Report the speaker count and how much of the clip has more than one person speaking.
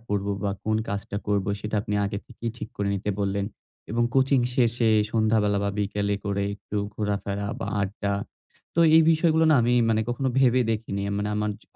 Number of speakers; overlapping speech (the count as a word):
one, no overlap